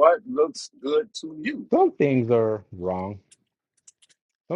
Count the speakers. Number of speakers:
2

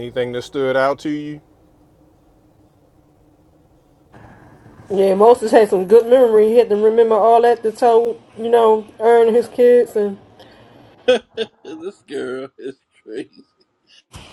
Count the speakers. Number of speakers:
3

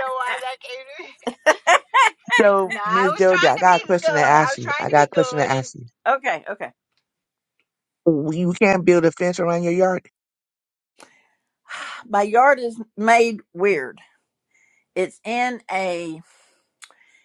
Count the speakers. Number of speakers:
3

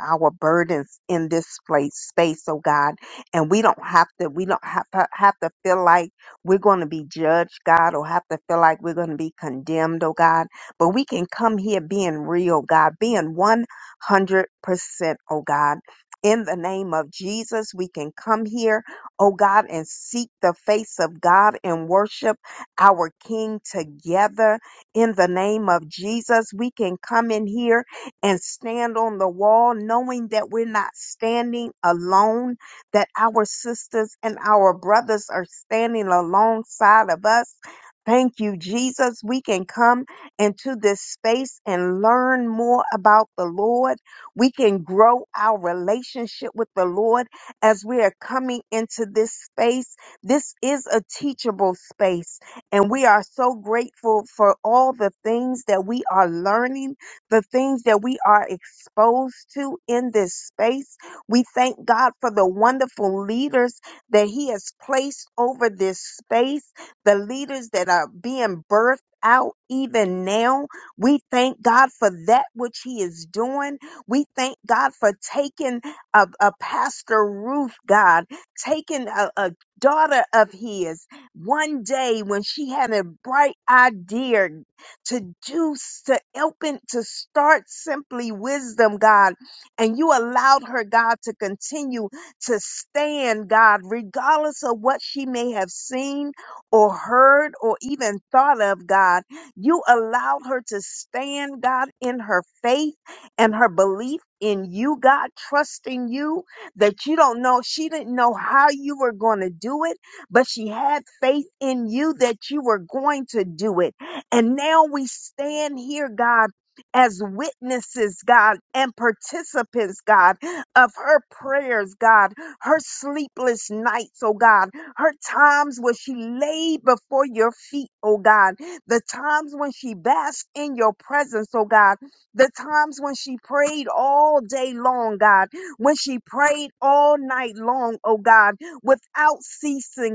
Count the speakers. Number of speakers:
1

